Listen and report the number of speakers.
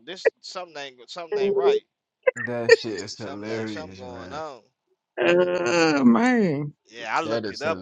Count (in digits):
3